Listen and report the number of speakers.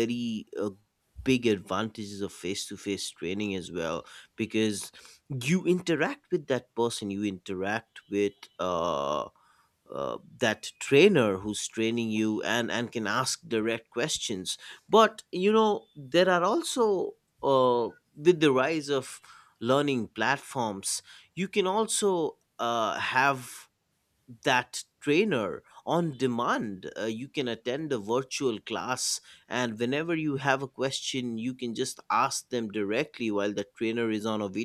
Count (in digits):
1